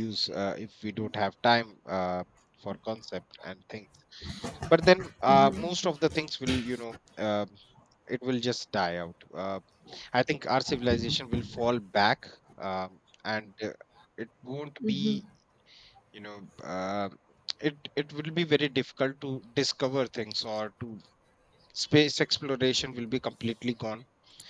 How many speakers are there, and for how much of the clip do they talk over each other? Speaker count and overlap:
1, no overlap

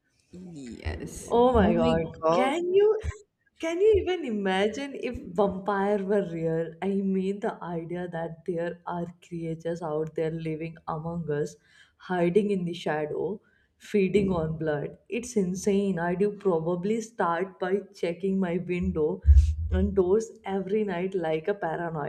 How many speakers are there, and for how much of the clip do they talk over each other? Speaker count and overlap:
2, about 4%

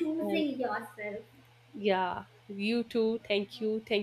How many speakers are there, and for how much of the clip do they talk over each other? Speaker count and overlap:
2, about 6%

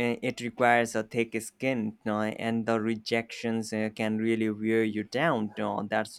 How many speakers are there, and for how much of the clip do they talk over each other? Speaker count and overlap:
1, no overlap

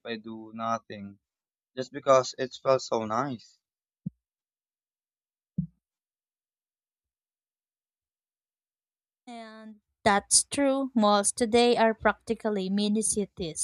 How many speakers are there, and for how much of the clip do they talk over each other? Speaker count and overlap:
2, no overlap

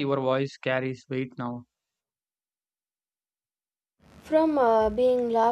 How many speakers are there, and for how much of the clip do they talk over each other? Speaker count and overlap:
2, no overlap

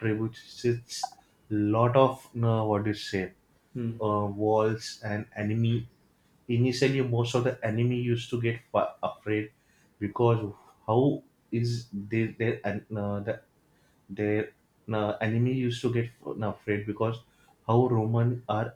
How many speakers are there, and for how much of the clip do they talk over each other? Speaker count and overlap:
1, no overlap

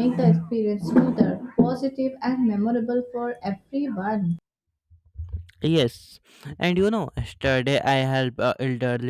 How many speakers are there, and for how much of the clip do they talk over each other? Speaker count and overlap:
2, no overlap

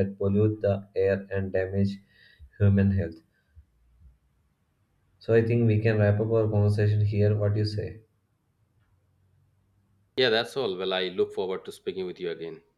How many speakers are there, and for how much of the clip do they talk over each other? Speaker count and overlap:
2, no overlap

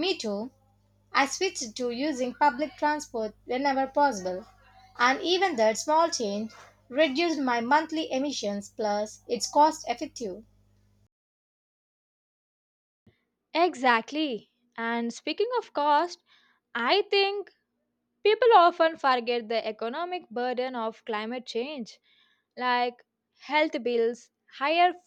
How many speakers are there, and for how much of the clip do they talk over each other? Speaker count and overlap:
2, no overlap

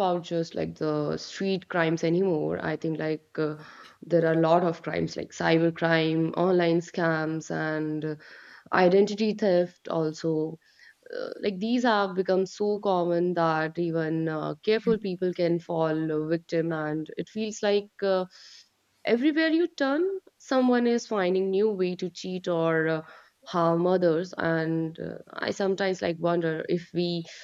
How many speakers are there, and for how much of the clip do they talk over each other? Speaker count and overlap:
1, no overlap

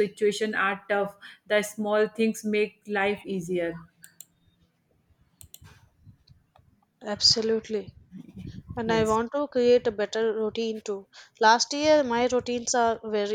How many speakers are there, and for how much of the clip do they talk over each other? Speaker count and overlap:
2, about 1%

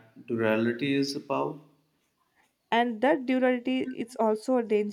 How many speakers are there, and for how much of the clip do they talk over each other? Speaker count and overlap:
2, no overlap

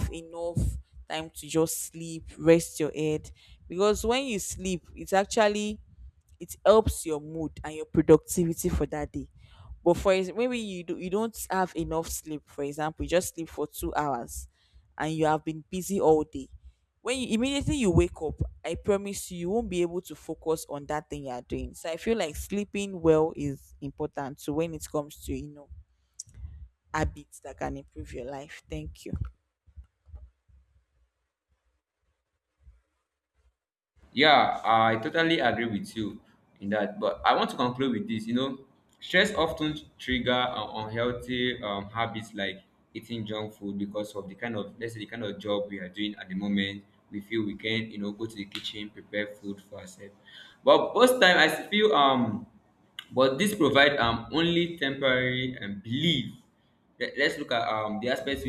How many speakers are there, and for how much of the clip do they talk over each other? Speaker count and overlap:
2, no overlap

